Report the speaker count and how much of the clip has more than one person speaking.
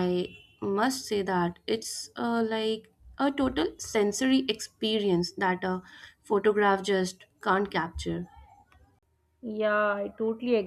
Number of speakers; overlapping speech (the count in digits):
2, no overlap